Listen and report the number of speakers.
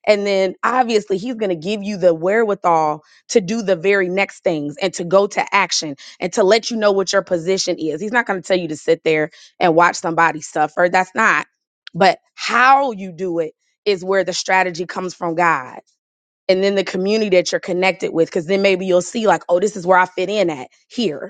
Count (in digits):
1